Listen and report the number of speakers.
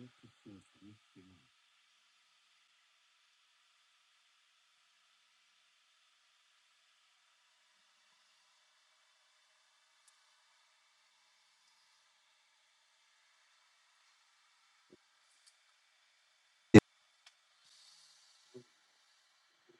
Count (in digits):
0